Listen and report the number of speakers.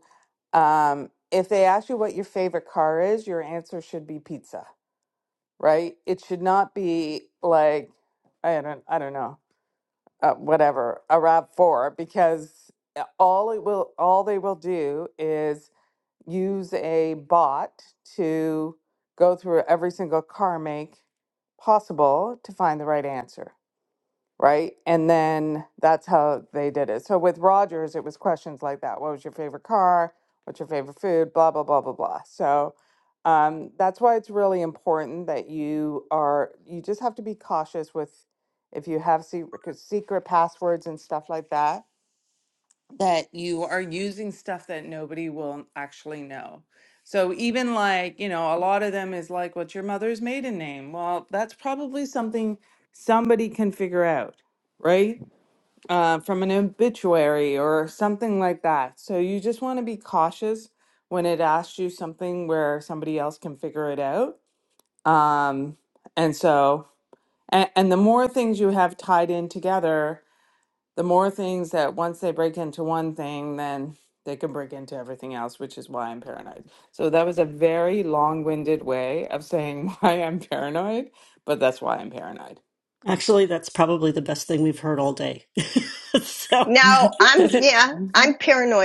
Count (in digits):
3